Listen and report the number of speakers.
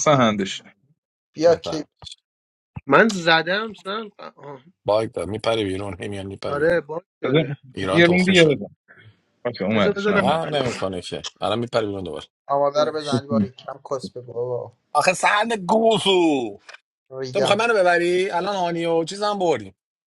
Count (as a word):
four